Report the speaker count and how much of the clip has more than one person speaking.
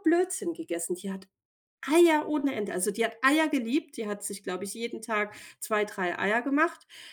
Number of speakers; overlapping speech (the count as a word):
one, no overlap